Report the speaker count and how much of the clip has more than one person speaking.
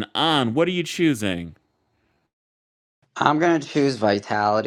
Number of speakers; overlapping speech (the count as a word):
two, no overlap